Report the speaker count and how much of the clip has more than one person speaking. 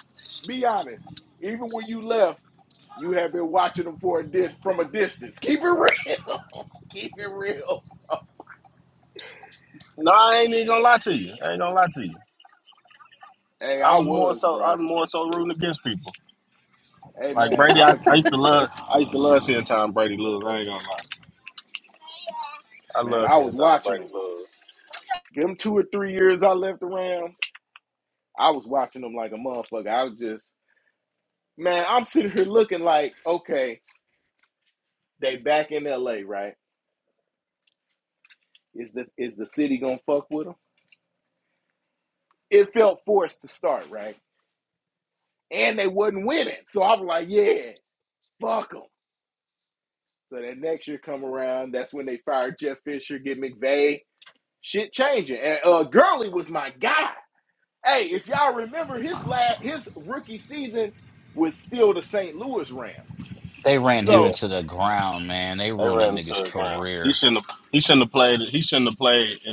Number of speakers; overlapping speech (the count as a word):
three, about 7%